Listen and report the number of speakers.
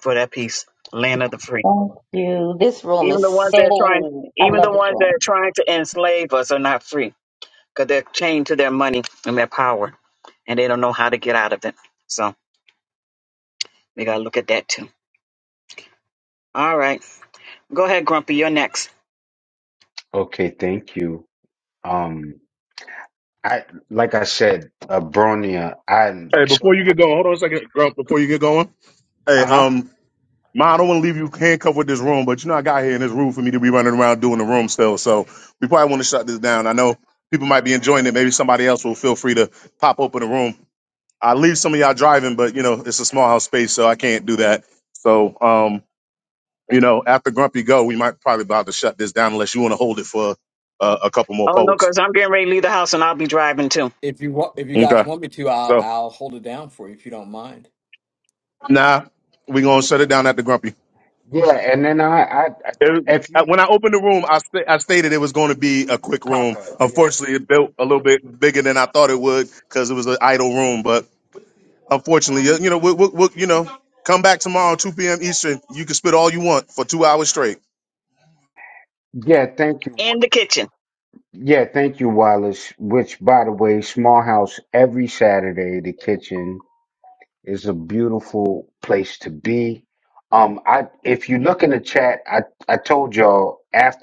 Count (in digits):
5